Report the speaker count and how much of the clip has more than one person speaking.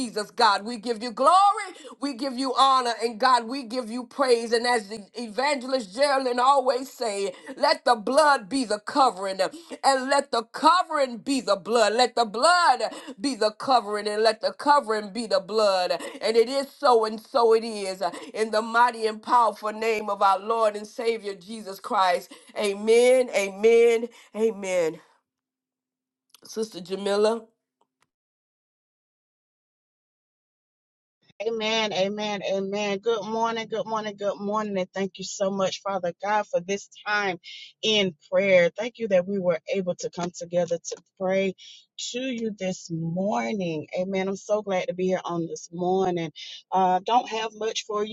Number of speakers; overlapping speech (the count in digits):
2, no overlap